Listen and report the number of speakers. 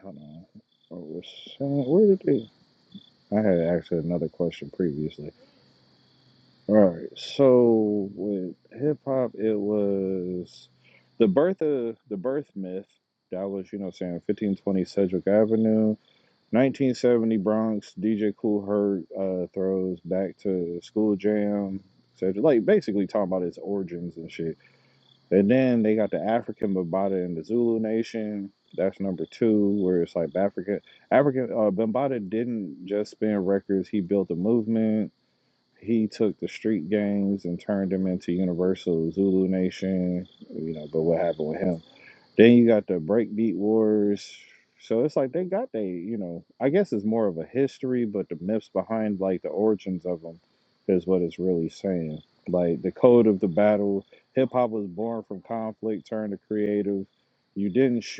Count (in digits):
1